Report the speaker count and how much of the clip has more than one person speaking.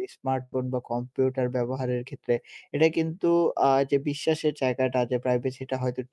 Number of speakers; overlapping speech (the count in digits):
1, no overlap